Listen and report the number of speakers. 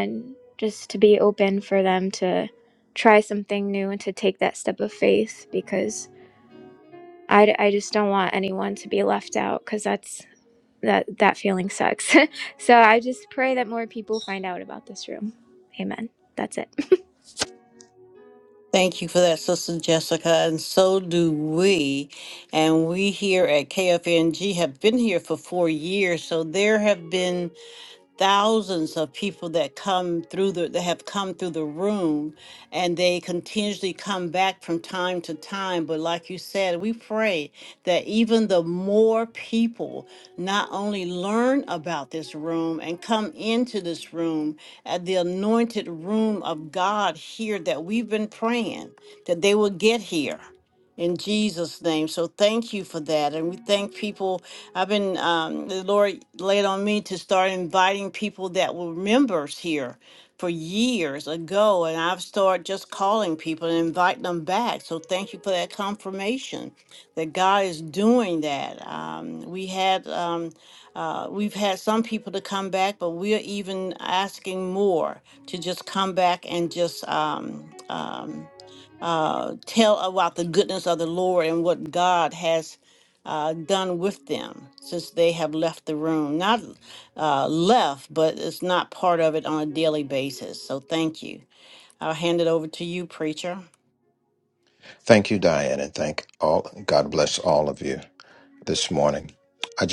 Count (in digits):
3